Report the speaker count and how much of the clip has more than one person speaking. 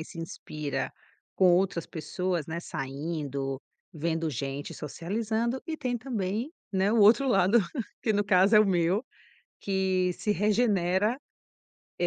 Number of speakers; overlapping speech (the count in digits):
1, no overlap